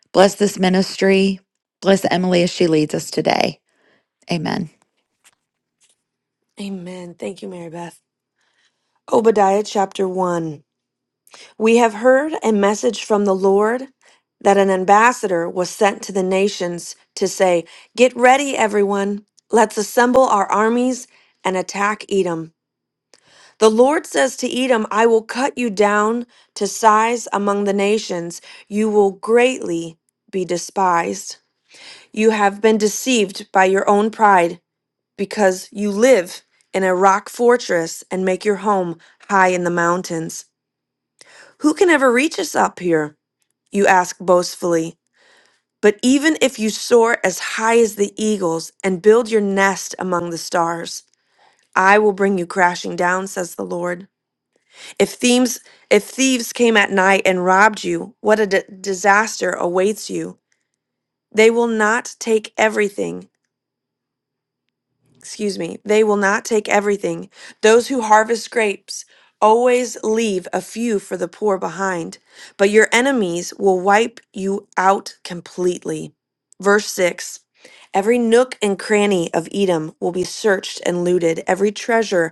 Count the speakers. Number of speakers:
2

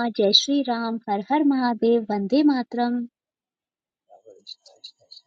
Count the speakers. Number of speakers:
1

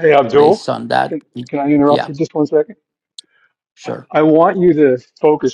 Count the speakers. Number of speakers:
2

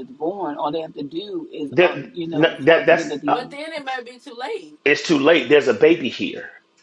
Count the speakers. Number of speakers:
3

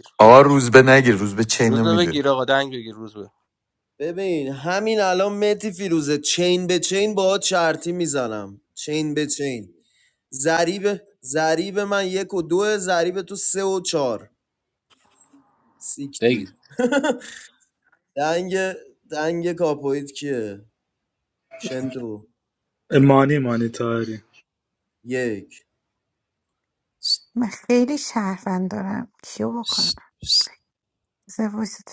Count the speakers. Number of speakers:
5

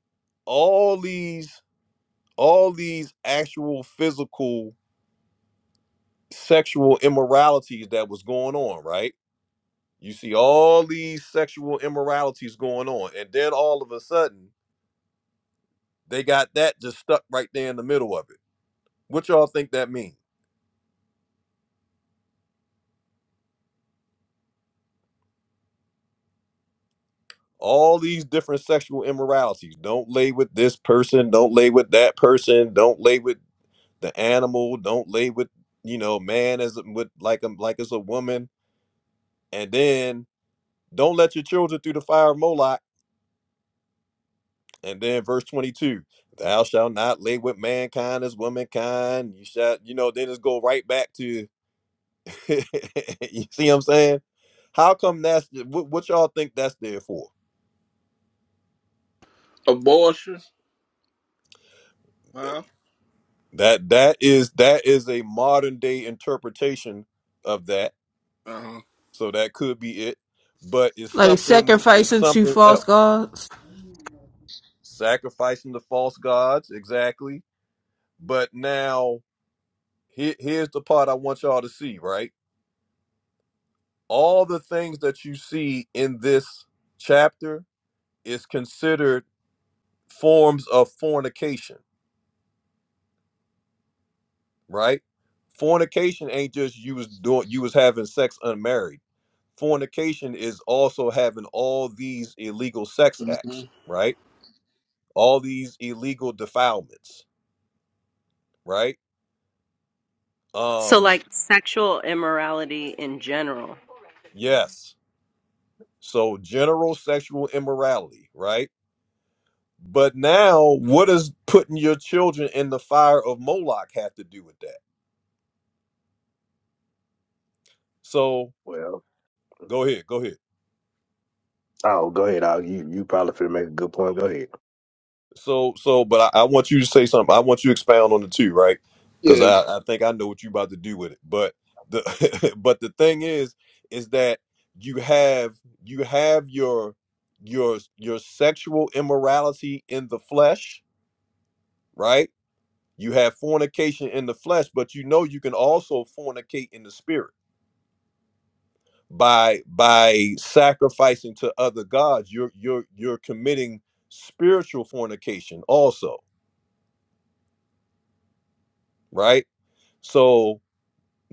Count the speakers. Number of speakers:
5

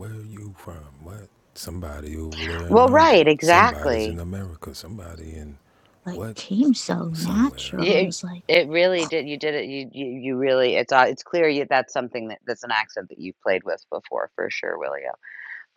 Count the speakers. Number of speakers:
3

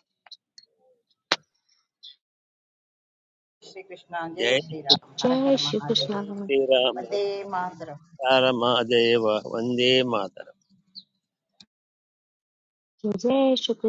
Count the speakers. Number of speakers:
3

